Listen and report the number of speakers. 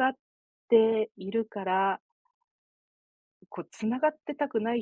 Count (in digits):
1